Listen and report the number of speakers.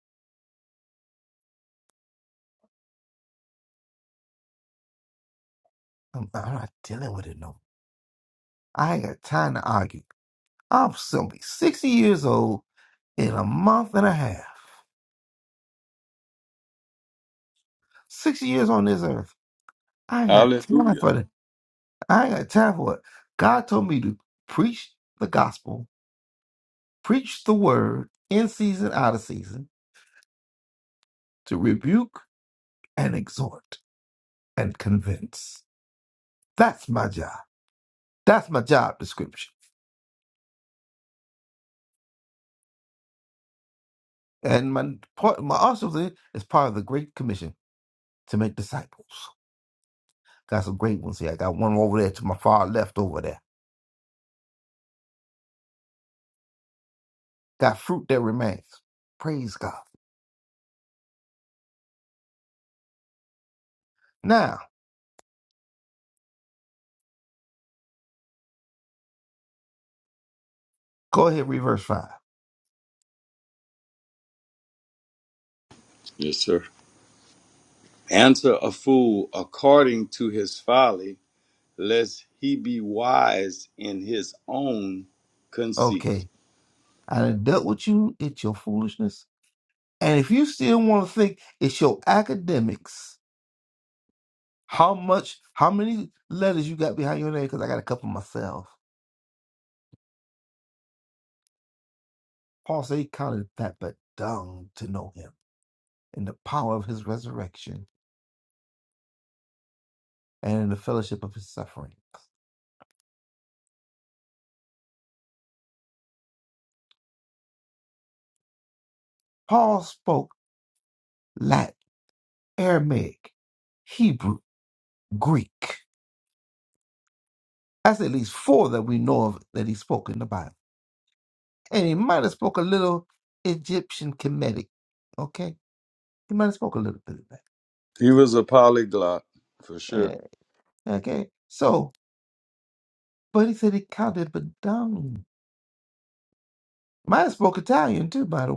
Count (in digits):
2